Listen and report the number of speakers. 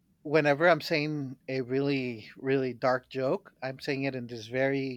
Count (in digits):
1